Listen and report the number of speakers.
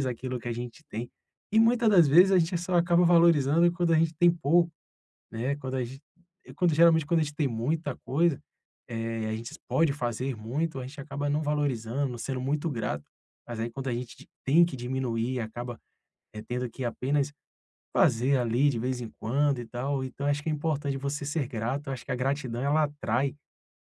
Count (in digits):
1